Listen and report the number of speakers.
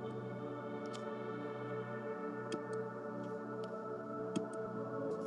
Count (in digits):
0